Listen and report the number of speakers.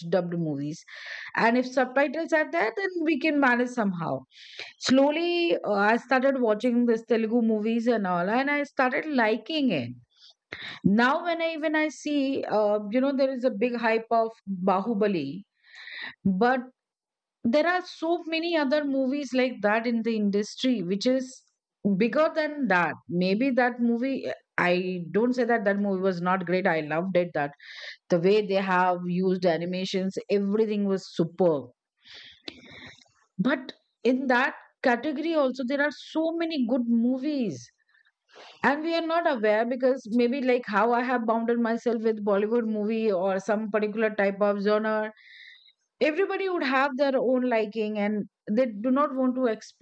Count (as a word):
one